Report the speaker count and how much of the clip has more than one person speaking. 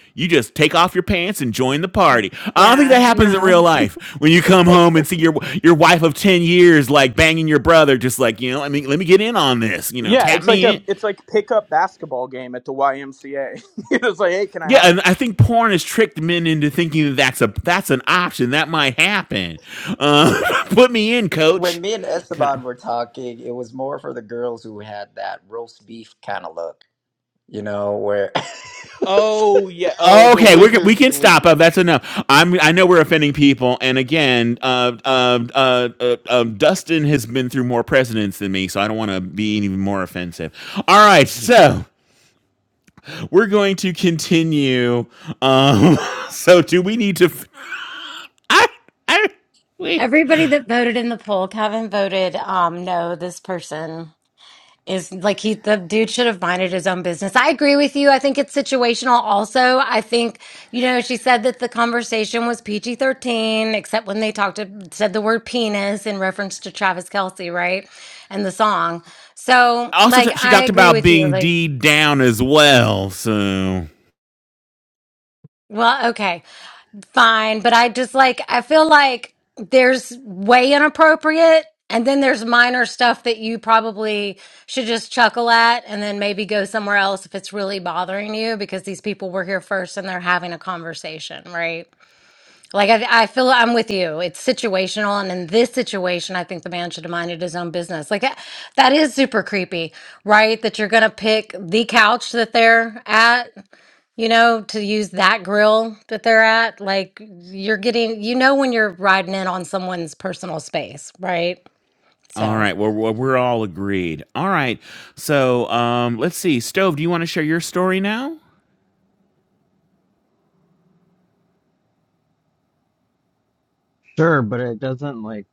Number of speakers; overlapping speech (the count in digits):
5, about 5%